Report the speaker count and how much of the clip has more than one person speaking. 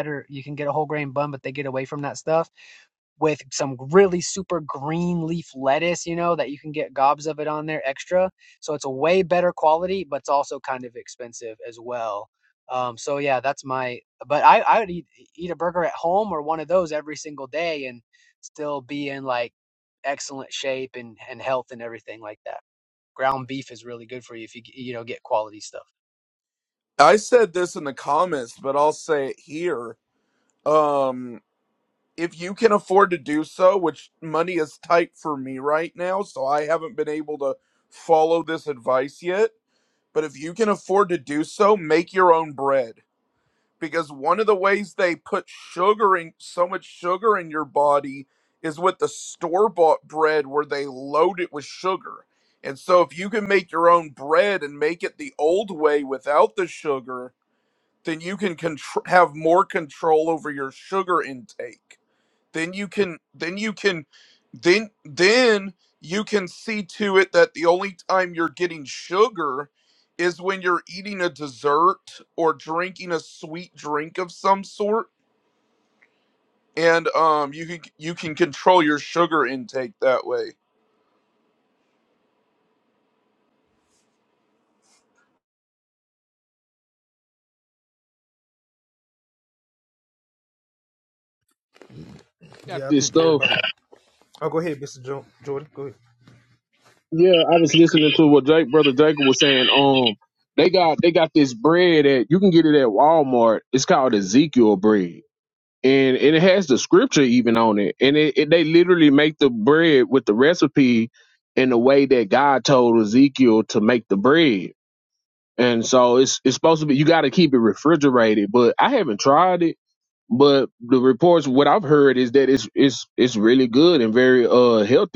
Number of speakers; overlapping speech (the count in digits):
4, about 1%